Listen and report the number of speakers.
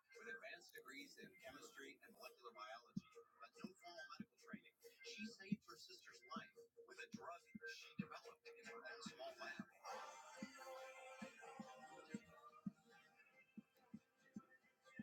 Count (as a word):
zero